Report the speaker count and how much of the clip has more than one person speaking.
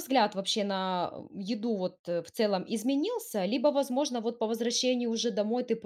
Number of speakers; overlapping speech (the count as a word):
one, no overlap